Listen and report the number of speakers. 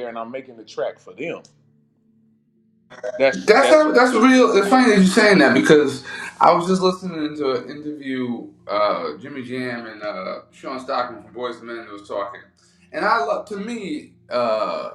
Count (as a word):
two